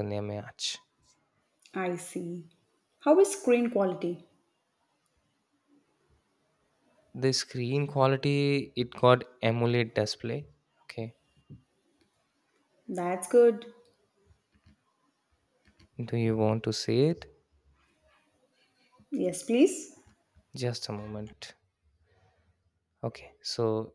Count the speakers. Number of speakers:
two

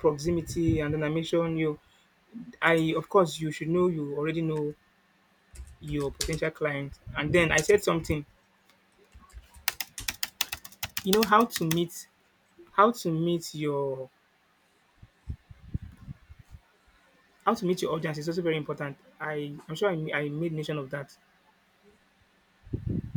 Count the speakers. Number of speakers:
one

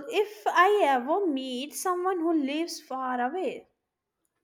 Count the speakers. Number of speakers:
one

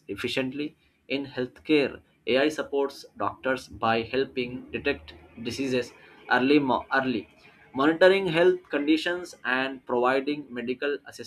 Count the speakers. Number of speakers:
one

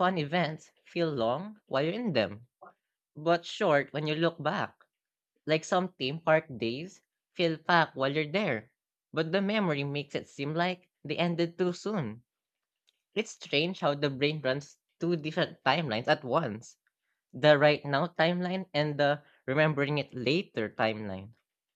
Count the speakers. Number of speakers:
one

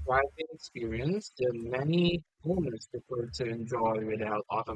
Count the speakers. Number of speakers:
one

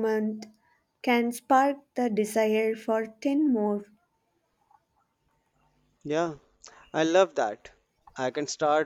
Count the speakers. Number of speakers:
two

